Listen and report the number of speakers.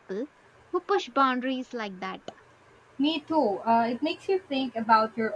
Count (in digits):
2